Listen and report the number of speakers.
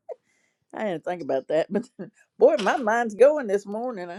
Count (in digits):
1